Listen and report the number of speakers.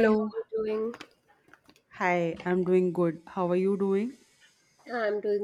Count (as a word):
two